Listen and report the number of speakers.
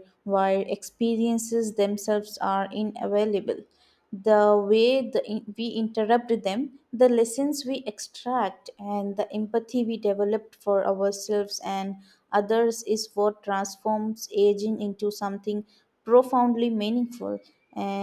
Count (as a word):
one